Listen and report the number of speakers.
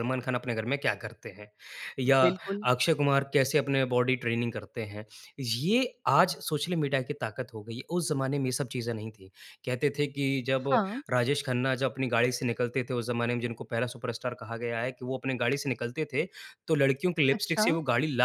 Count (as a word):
two